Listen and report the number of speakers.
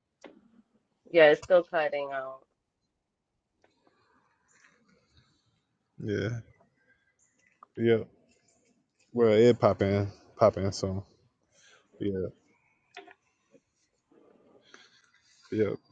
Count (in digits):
2